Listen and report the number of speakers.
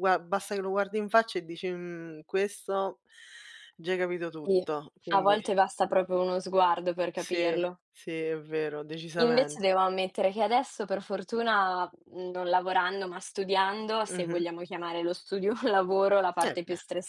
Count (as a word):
two